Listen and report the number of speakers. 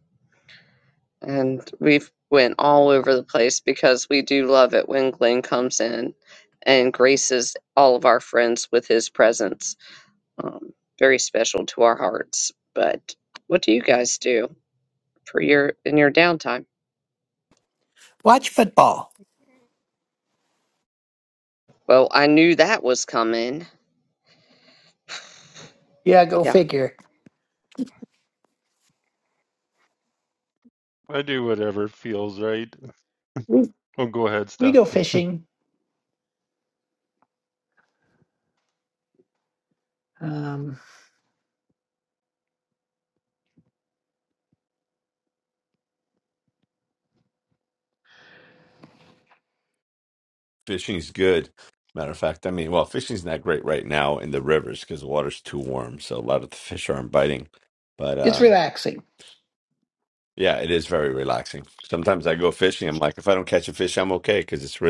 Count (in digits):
4